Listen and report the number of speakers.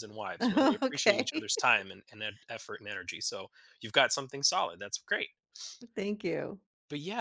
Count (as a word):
two